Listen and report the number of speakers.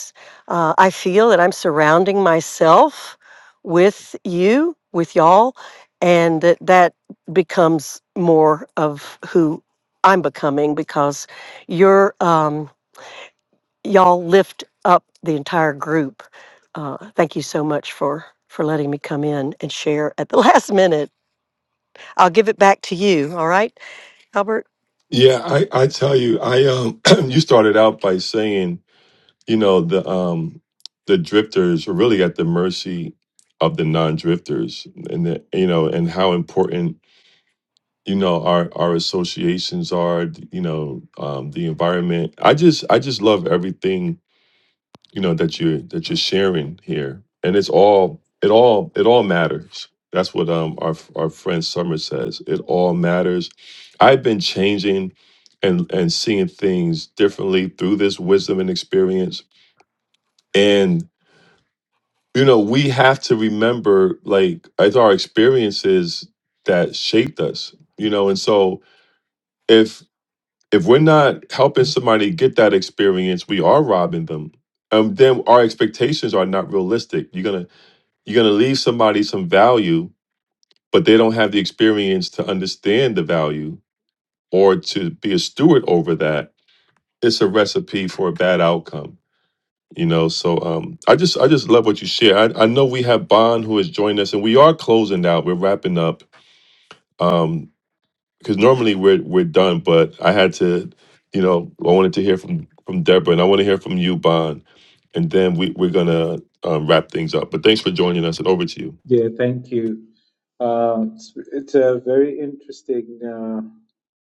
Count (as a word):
three